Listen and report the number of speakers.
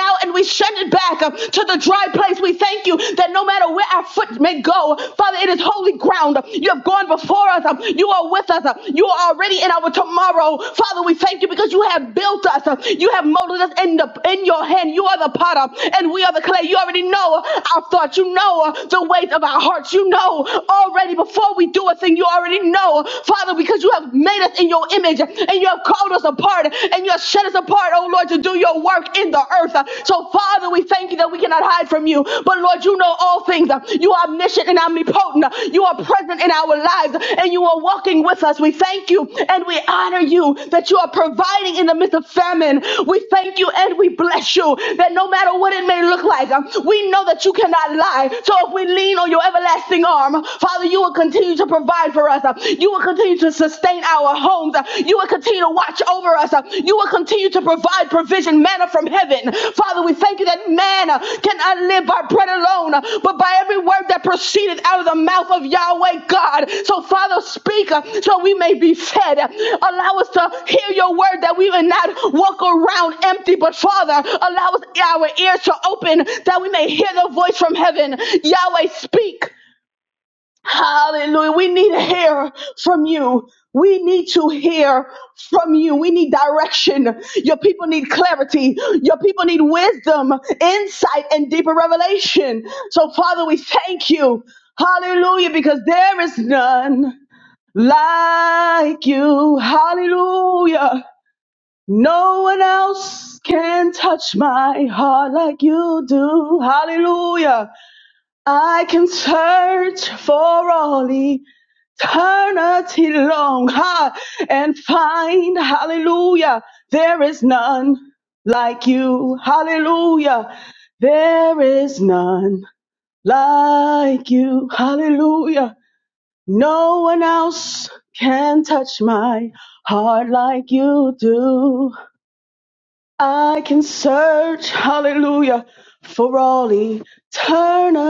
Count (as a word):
one